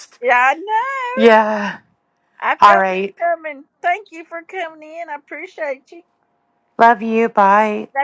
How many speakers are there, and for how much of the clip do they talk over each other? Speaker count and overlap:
two, about 8%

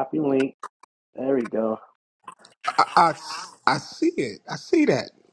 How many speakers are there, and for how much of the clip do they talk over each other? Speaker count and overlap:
two, no overlap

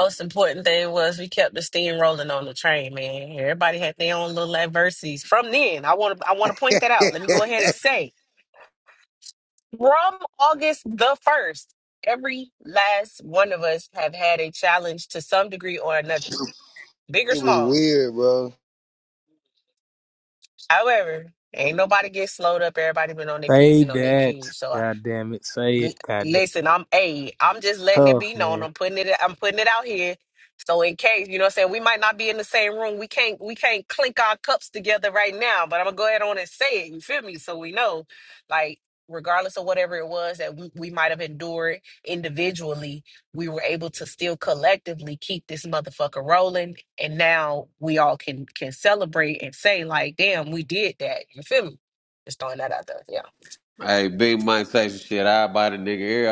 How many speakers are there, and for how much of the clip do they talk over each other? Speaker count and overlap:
four, about 4%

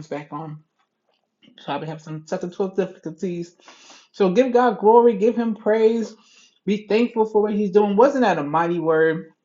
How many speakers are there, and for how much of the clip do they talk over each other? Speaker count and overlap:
one, no overlap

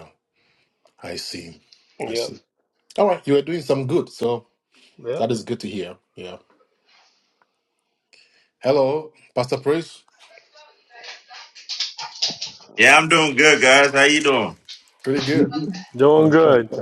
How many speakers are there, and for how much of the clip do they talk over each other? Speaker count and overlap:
three, about 3%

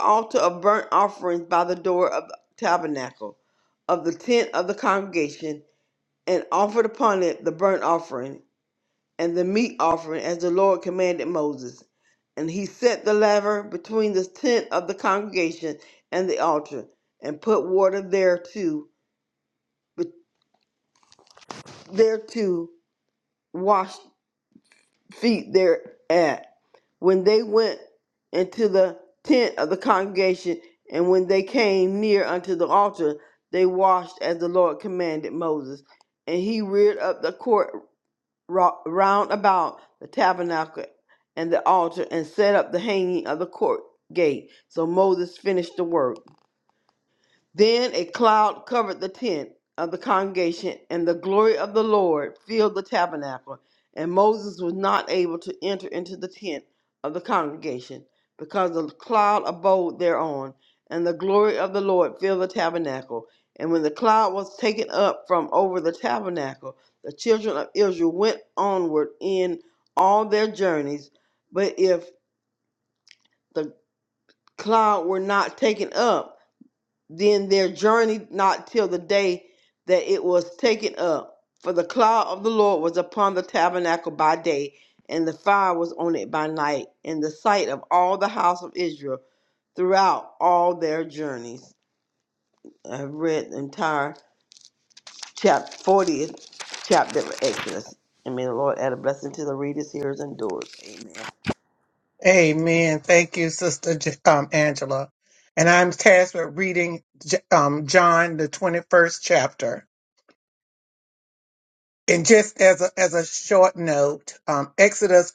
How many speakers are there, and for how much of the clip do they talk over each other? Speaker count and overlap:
two, no overlap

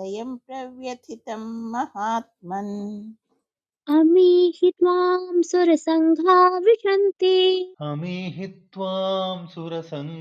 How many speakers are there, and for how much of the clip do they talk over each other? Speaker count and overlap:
three, no overlap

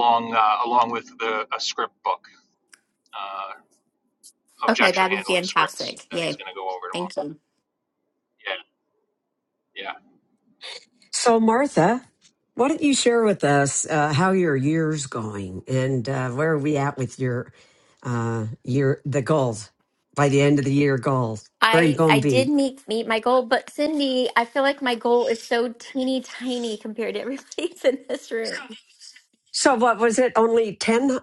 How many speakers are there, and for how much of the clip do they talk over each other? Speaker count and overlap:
three, about 8%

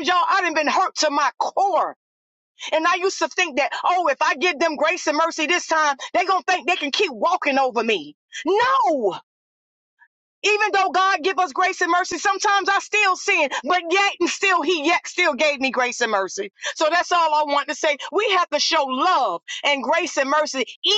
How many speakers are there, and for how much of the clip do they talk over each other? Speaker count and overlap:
one, no overlap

